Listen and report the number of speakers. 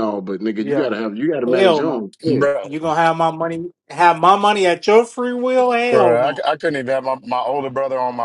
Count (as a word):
three